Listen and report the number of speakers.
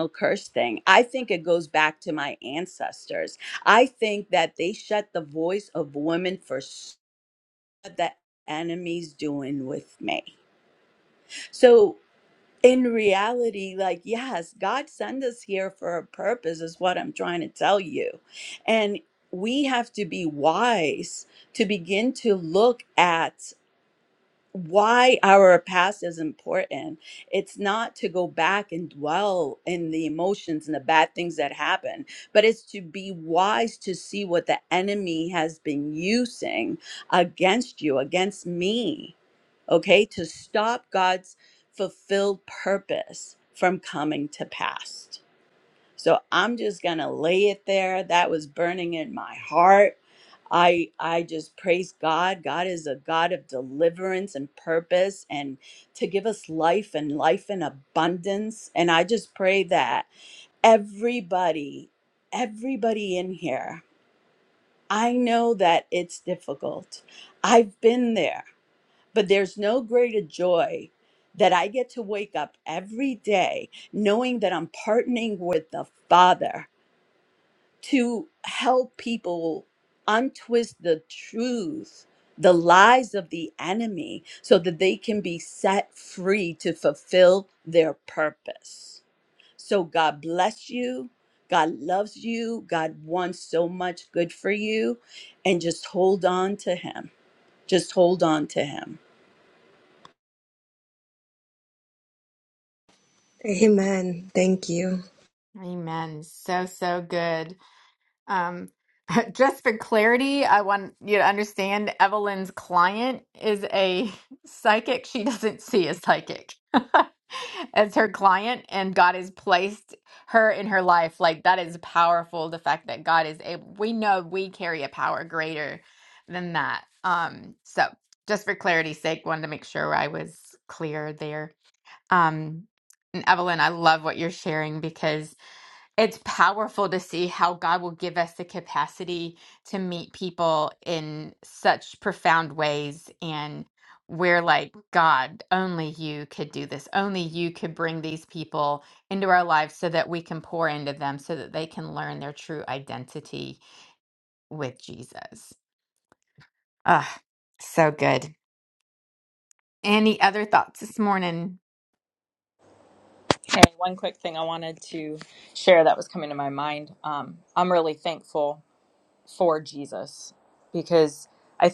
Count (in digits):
4